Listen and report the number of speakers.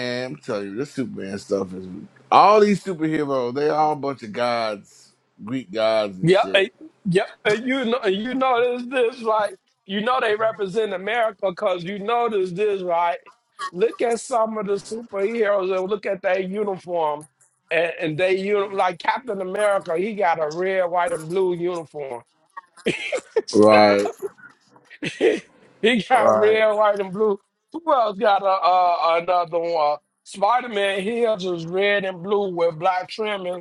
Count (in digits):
2